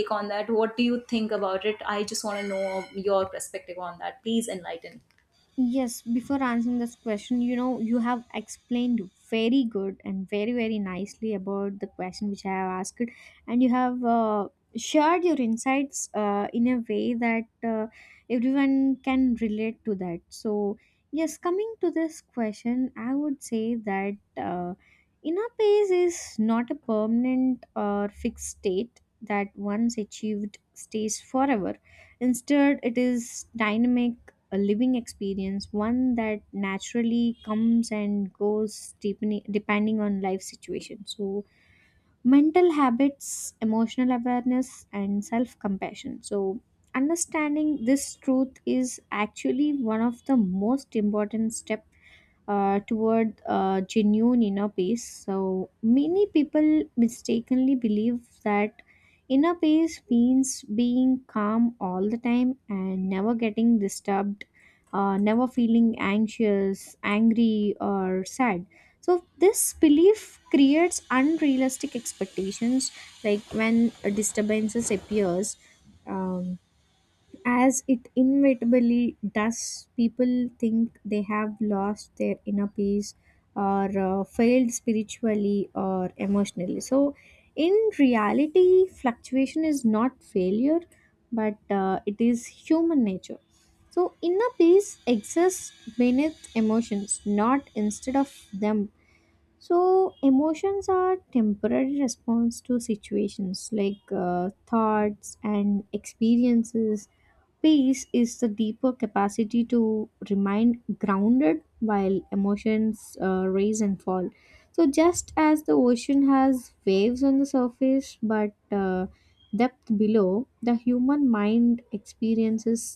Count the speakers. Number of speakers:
2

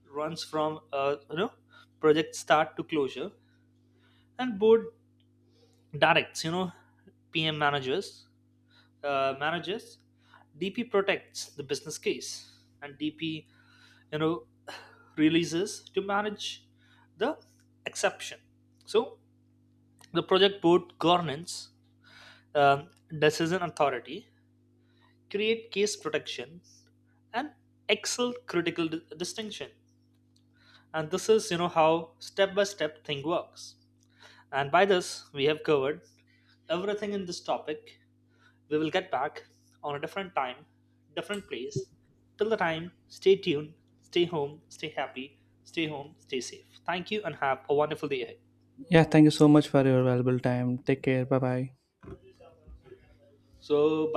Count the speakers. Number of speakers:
2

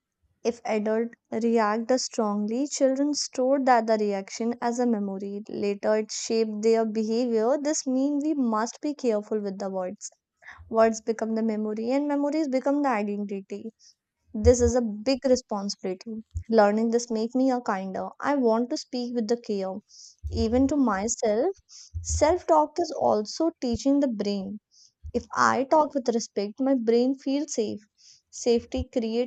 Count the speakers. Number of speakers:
1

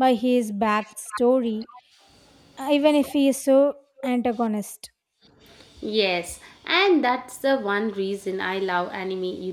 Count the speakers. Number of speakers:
2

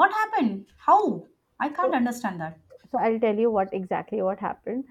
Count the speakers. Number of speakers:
2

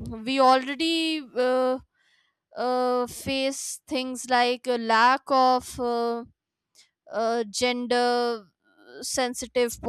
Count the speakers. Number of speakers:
1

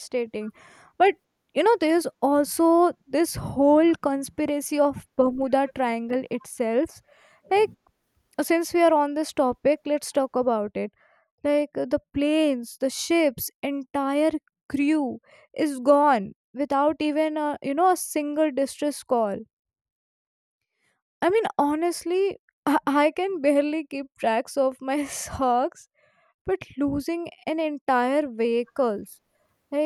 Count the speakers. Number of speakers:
1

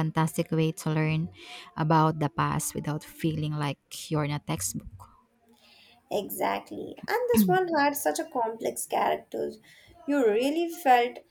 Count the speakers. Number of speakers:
2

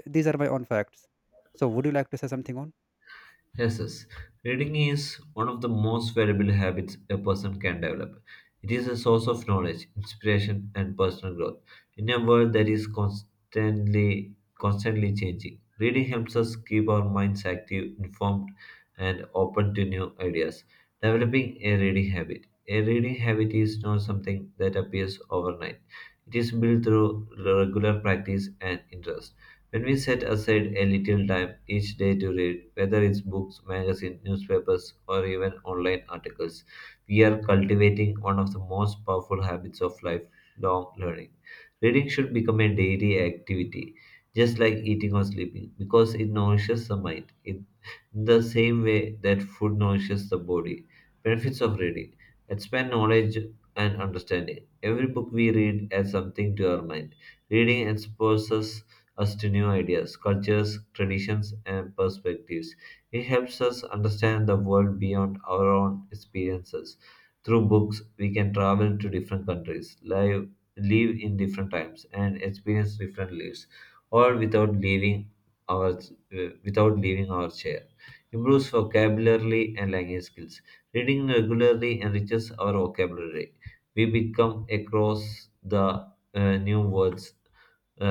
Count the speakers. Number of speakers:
2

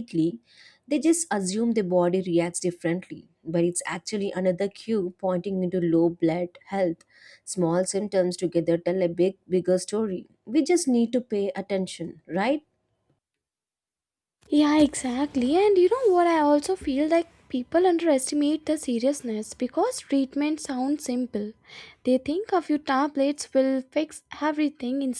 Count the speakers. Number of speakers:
2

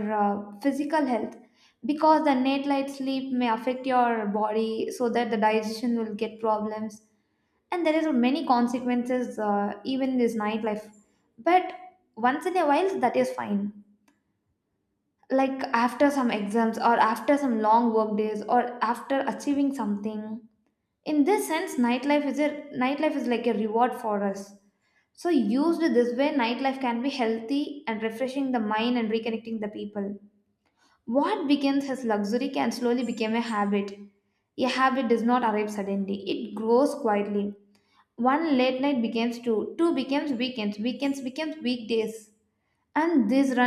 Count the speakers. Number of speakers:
1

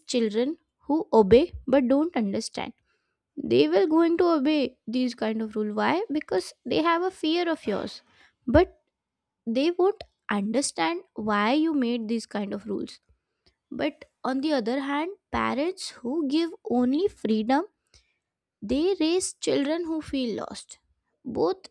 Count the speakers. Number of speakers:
1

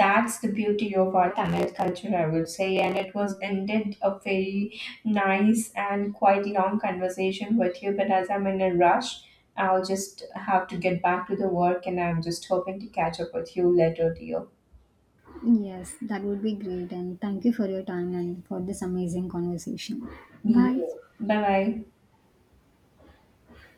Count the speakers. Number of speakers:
2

